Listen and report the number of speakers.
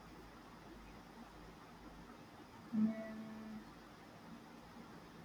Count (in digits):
0